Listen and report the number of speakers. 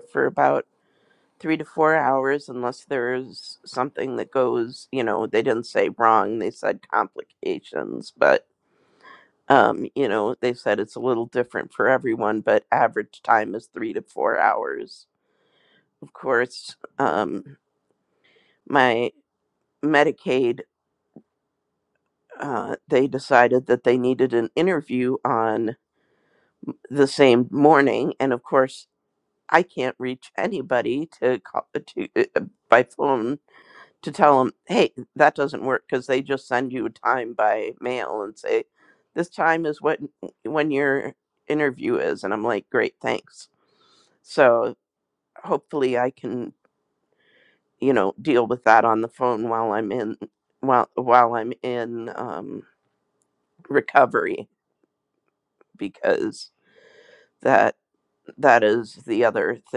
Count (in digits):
1